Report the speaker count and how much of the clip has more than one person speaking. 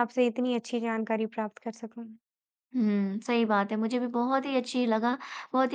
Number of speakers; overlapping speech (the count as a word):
two, no overlap